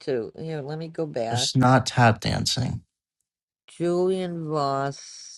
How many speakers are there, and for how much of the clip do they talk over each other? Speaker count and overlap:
2, about 3%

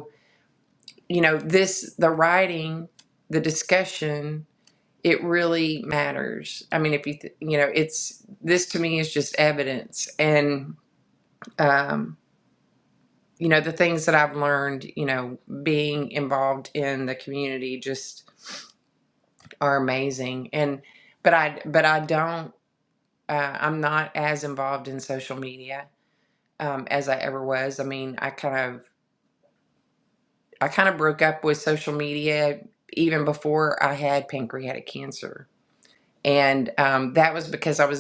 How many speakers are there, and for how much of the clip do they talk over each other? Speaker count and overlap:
1, no overlap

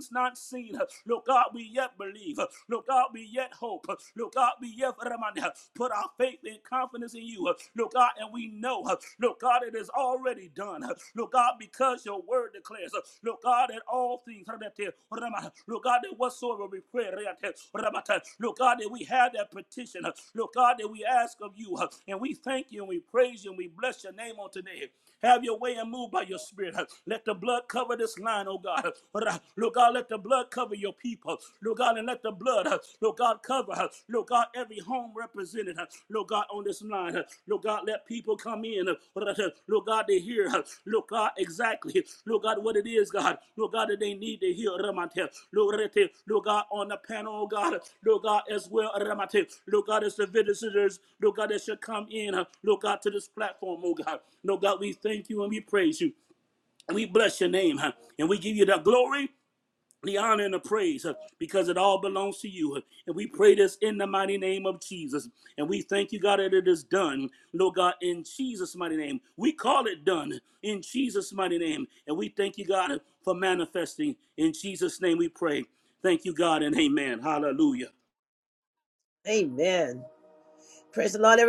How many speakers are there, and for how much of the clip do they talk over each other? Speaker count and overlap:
2, no overlap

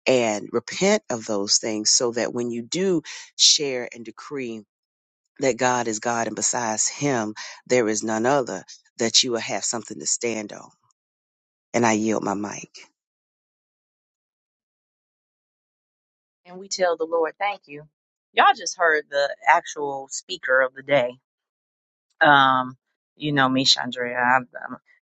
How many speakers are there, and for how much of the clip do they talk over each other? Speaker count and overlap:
2, no overlap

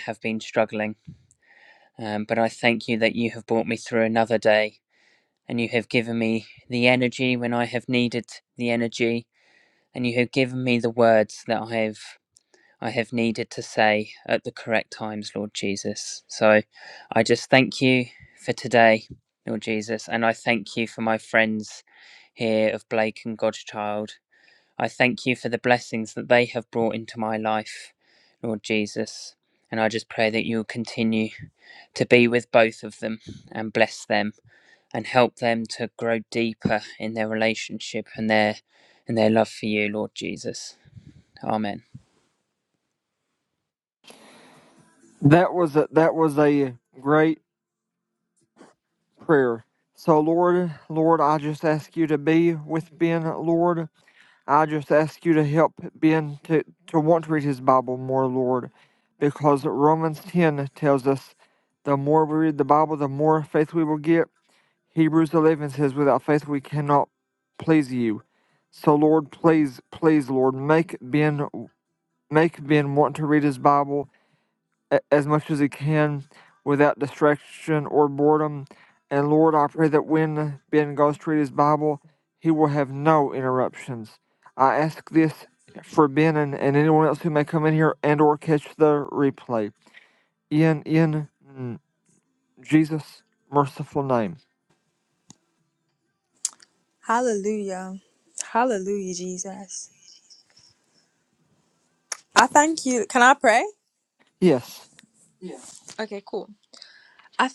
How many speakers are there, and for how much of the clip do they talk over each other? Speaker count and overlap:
3, no overlap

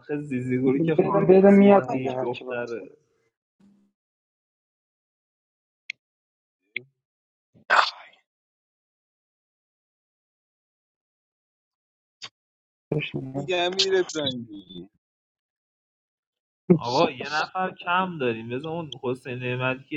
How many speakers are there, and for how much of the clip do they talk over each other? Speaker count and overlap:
3, about 9%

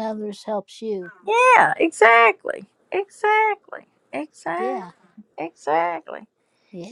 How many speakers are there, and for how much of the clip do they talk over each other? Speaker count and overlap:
2, about 4%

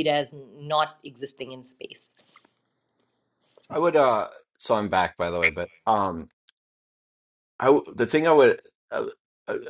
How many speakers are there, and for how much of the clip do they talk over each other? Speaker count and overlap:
2, no overlap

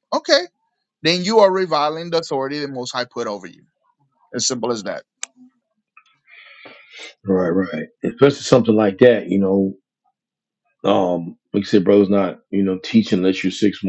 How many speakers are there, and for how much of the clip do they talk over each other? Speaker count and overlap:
2, no overlap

